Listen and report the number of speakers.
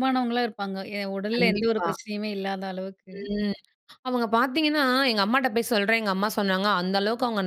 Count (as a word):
two